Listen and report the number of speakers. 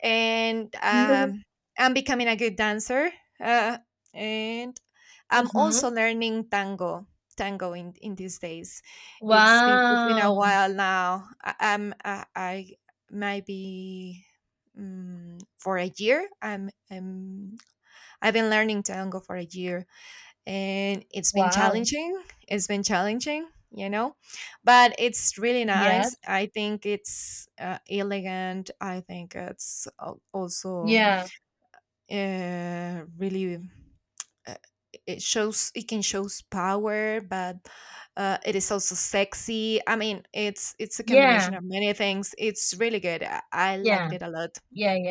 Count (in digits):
2